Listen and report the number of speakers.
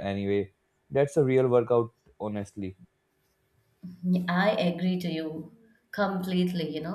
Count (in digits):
2